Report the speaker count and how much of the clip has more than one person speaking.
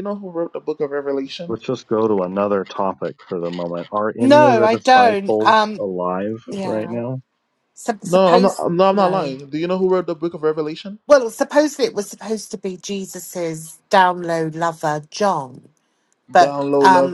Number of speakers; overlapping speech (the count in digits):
3, about 21%